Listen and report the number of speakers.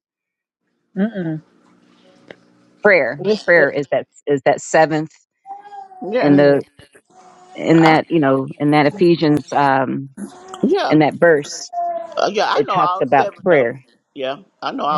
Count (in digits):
3